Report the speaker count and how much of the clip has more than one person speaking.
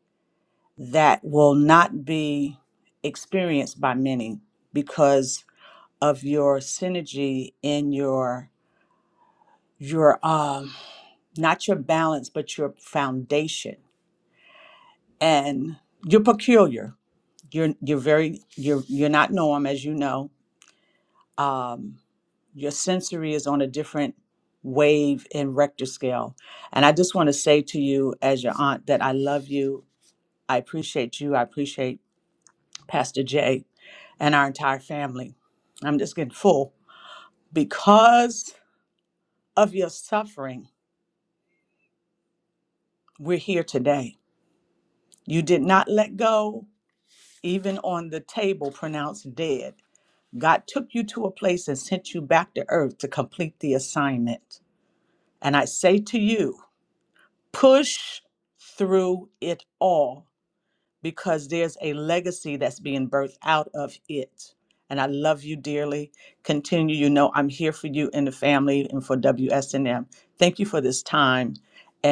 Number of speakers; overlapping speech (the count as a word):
one, no overlap